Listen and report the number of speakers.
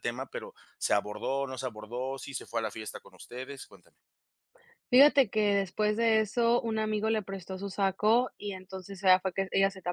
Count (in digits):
2